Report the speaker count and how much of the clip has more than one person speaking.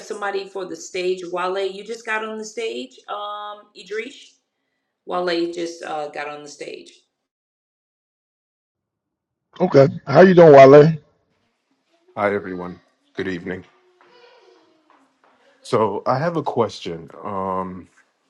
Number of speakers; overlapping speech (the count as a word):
three, no overlap